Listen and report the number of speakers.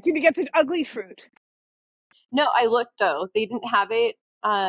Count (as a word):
two